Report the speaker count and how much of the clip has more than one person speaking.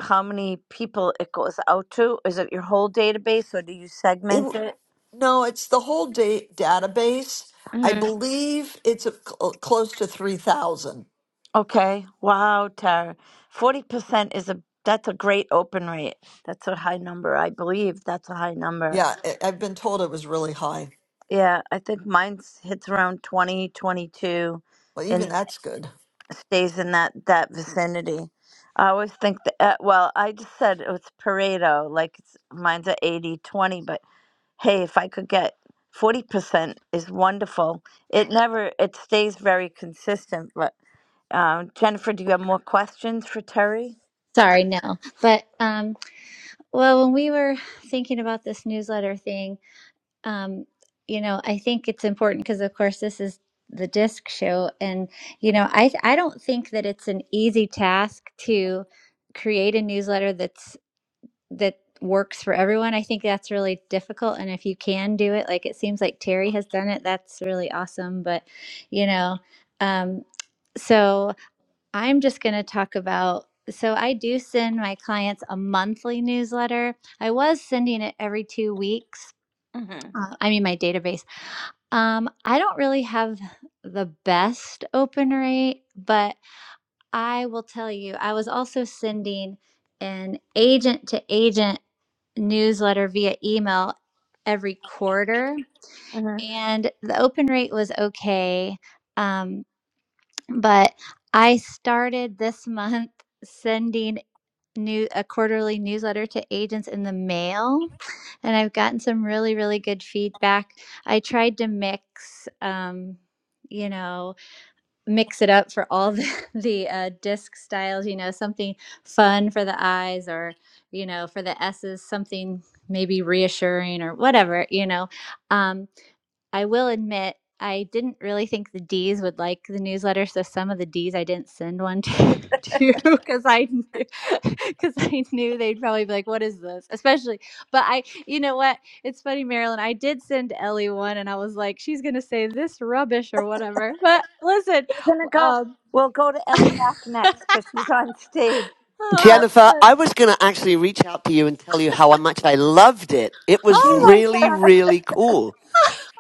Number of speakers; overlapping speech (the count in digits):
4, about 2%